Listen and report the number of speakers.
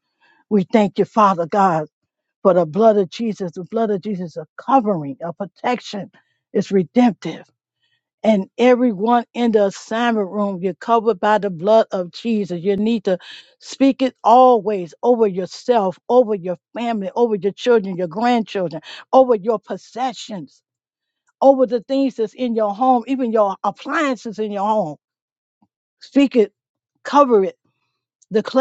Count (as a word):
one